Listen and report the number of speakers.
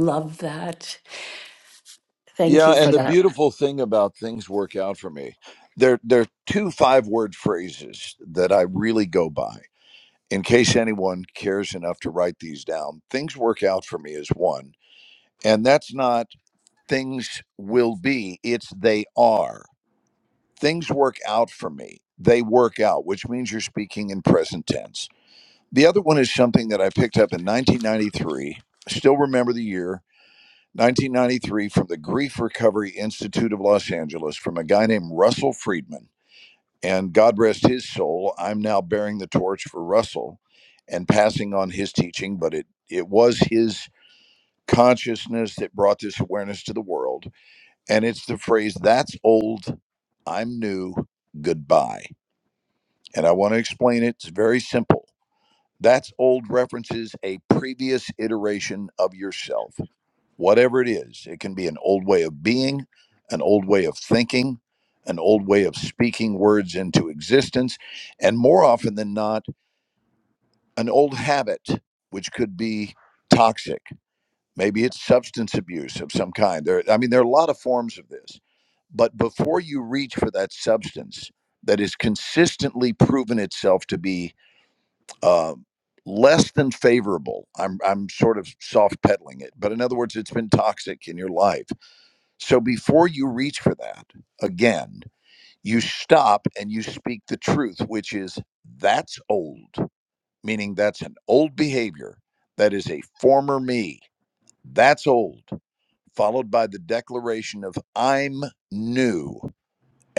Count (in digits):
2